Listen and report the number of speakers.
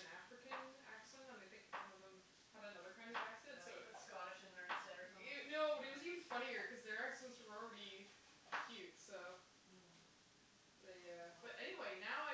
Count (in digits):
2